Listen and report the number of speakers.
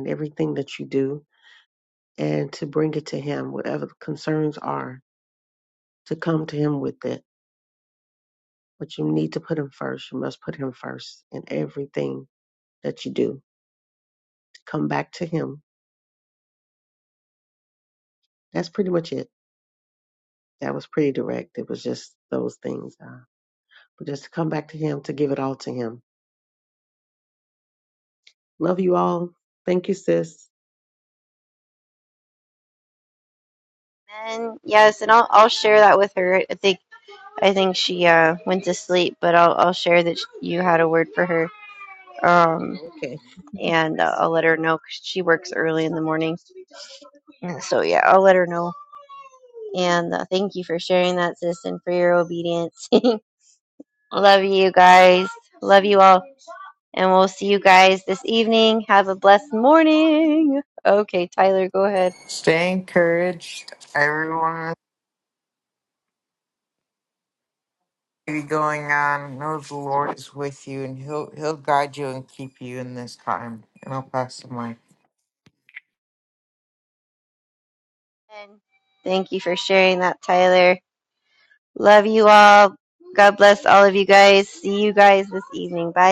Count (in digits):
3